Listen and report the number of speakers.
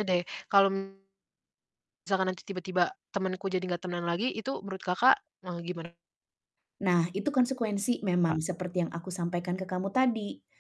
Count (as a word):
two